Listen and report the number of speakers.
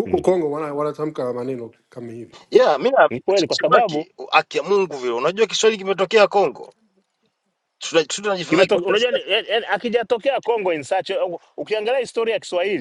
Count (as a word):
three